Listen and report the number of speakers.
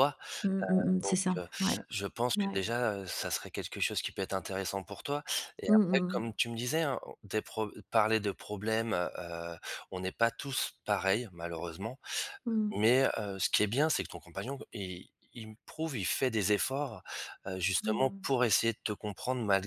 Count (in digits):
2